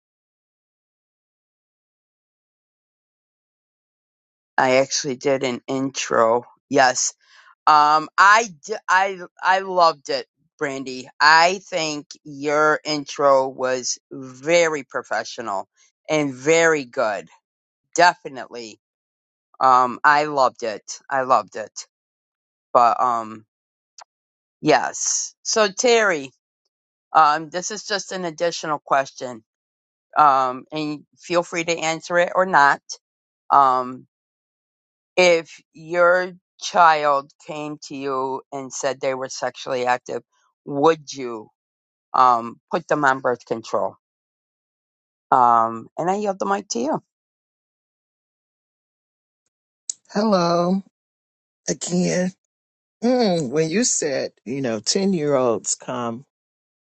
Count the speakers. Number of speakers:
two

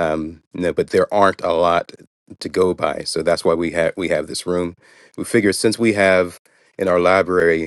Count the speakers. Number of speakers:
one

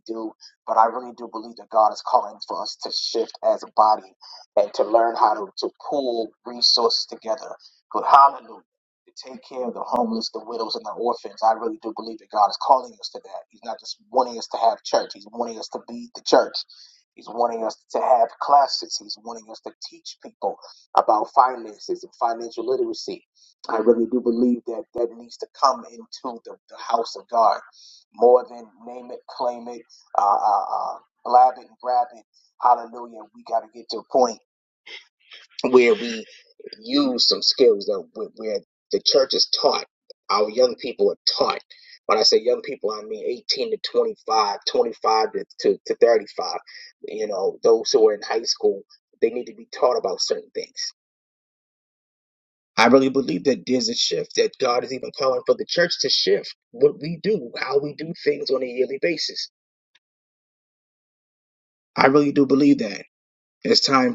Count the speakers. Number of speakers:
one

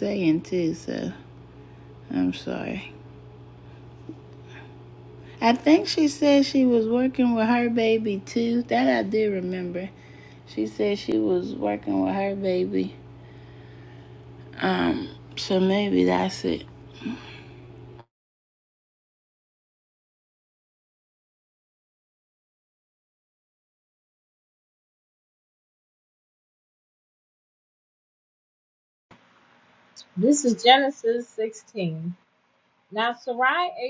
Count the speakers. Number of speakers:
two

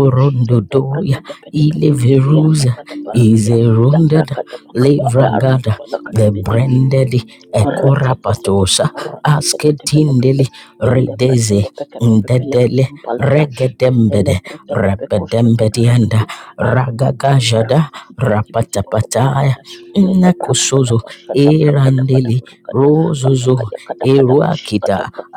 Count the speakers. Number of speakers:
two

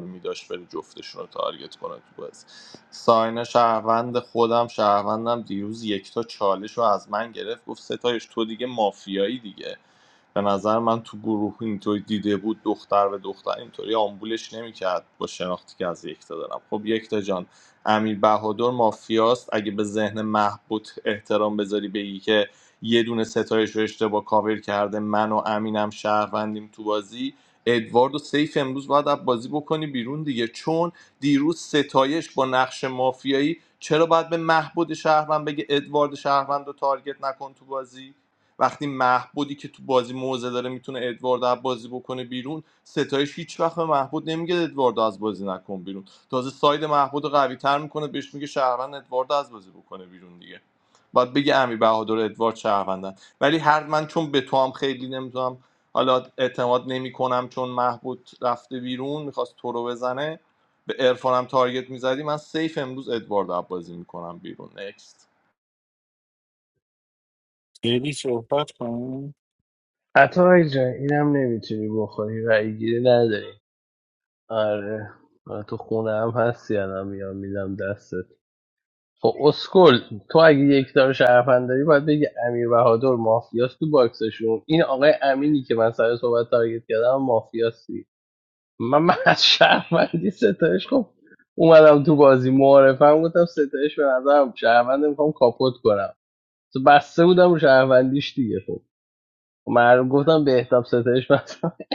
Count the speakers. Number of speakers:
three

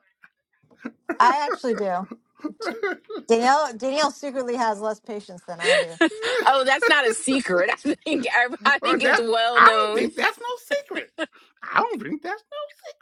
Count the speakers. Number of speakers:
three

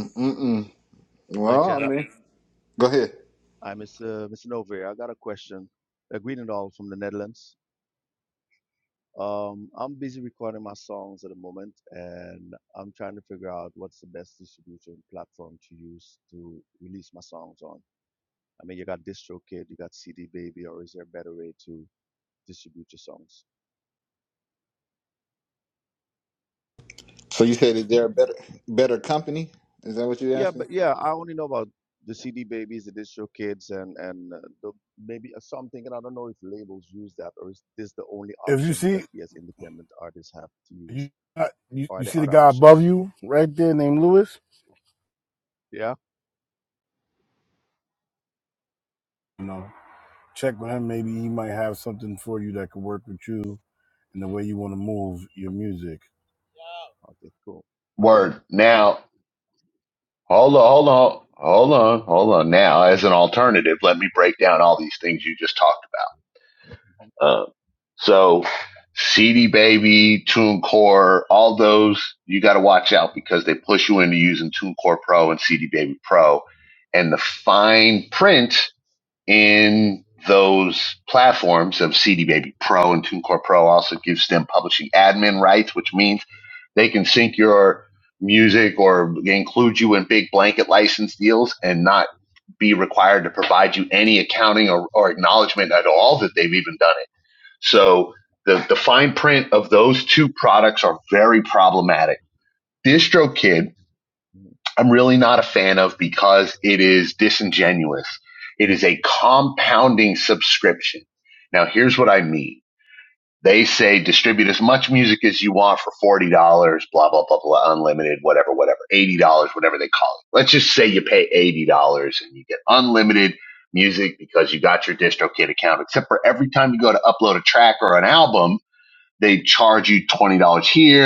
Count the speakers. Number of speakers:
four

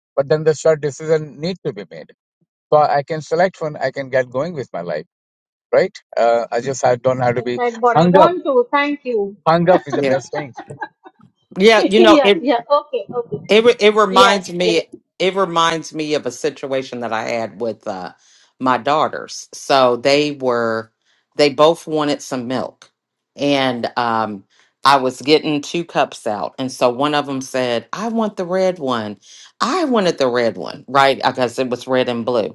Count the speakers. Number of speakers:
three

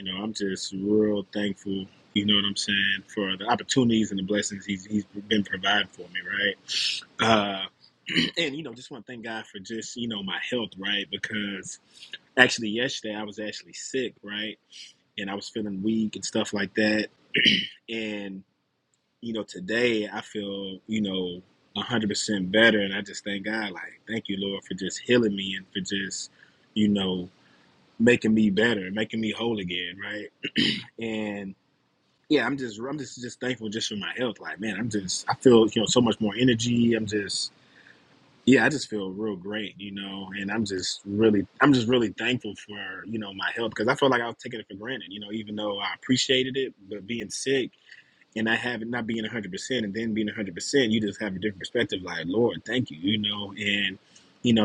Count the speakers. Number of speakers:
one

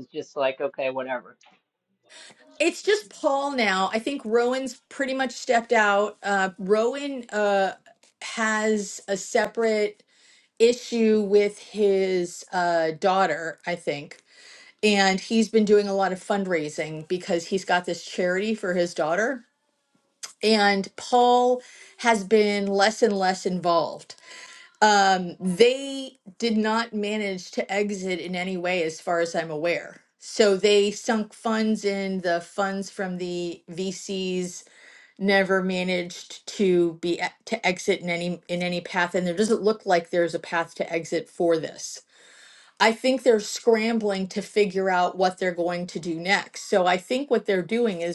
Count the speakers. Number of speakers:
two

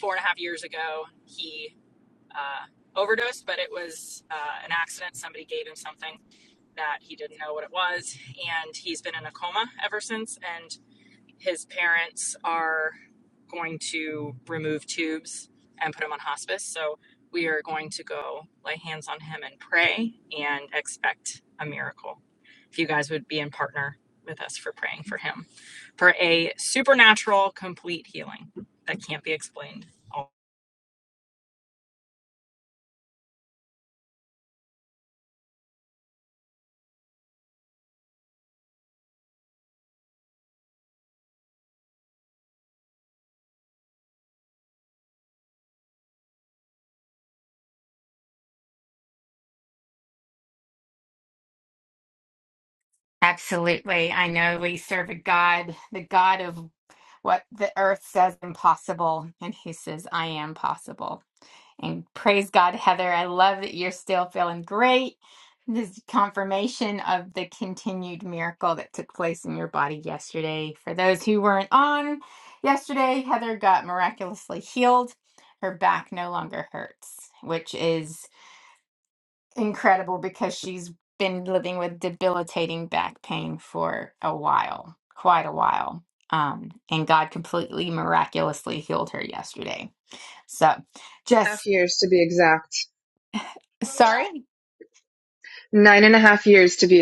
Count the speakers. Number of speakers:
three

